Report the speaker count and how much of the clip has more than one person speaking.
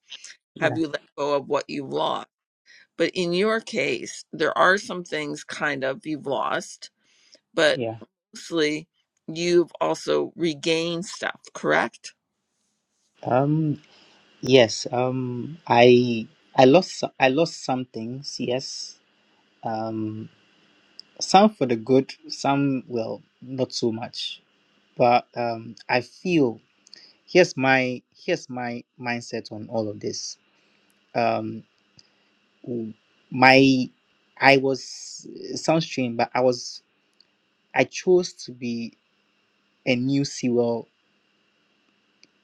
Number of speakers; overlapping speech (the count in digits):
2, about 1%